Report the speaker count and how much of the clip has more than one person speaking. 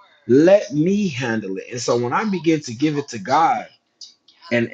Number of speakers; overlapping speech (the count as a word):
one, no overlap